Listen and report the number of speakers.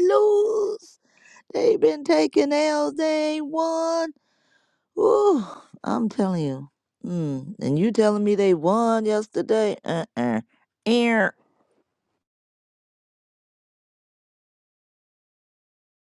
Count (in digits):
1